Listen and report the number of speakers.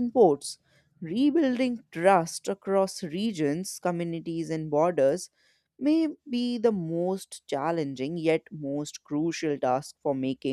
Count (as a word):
one